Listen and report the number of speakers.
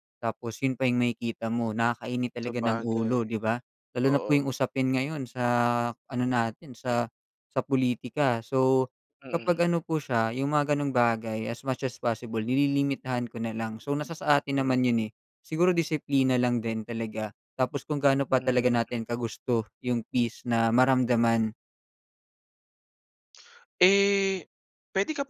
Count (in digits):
2